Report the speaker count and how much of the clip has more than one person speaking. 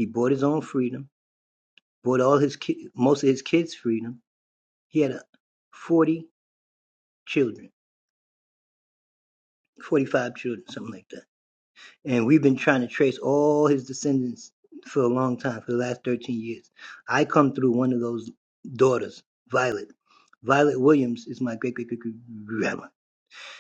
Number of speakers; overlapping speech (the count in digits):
1, no overlap